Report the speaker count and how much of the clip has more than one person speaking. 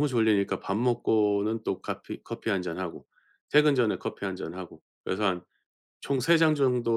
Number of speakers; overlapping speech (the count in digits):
1, no overlap